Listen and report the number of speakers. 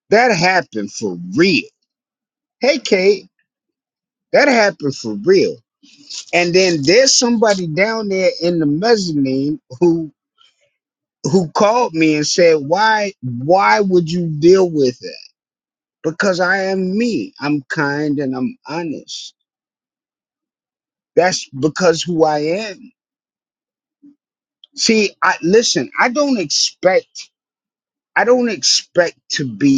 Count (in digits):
1